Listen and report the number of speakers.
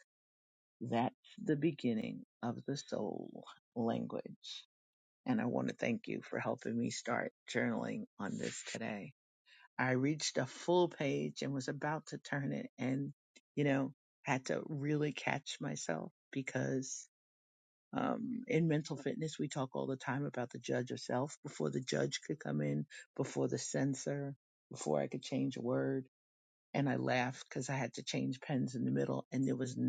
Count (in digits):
1